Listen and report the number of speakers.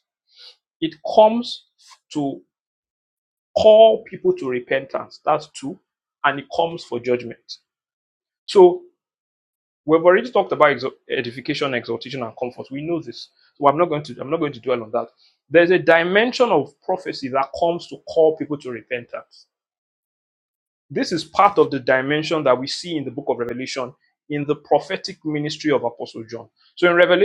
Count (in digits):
1